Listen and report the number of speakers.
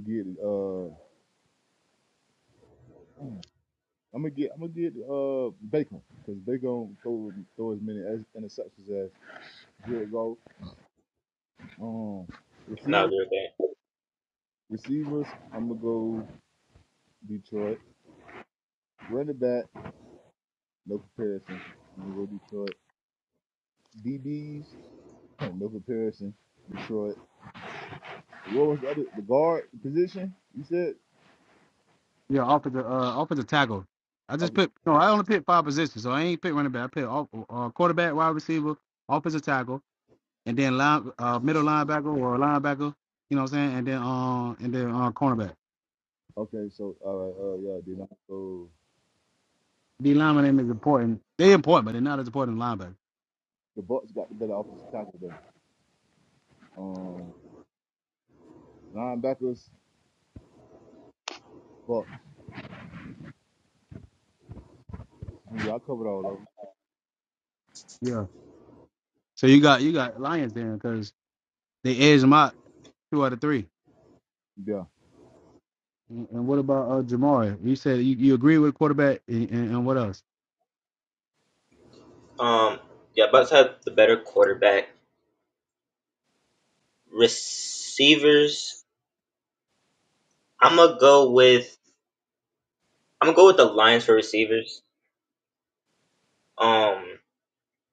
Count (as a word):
three